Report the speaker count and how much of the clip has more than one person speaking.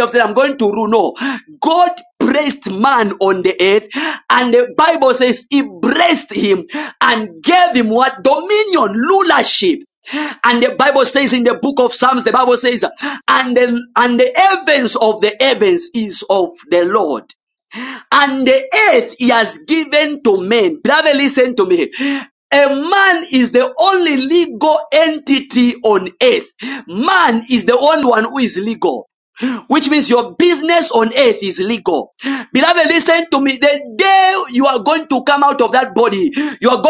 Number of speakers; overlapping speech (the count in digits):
1, no overlap